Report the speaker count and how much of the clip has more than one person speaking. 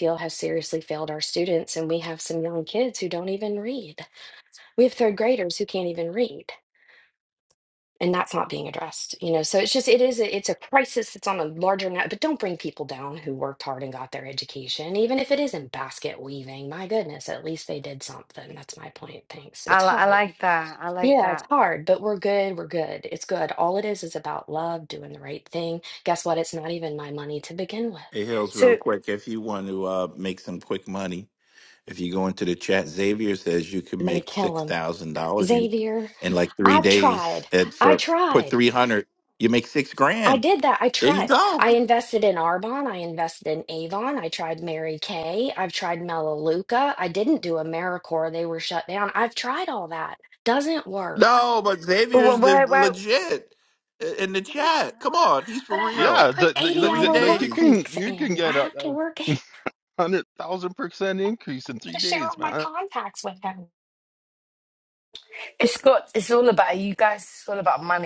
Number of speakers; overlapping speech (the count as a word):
four, about 16%